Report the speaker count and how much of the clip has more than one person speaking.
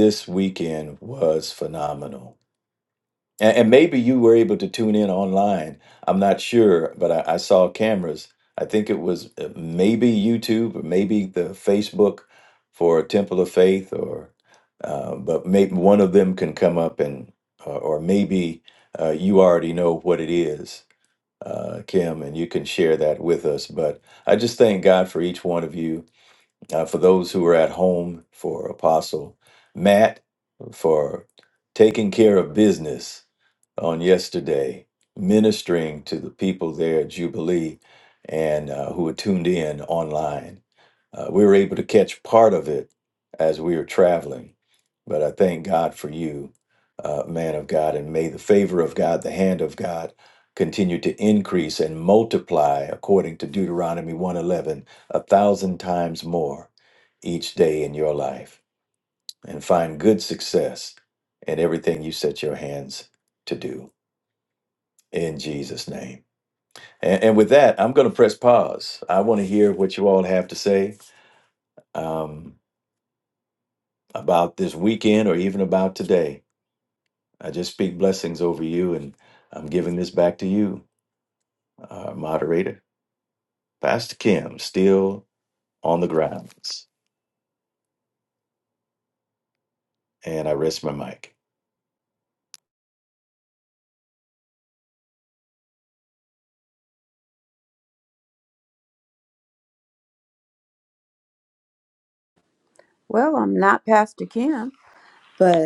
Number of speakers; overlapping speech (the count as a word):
two, no overlap